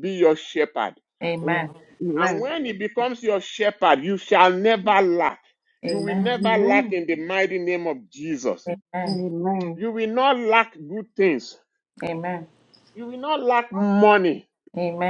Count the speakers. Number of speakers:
3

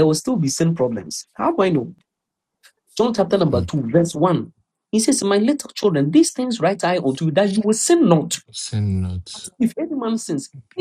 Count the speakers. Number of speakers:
2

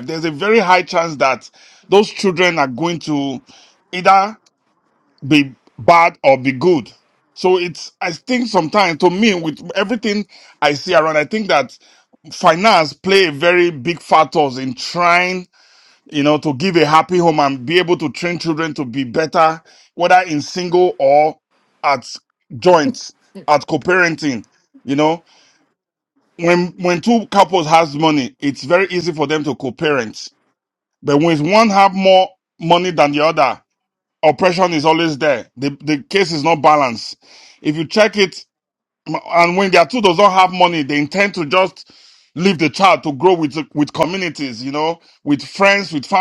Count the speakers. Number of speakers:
1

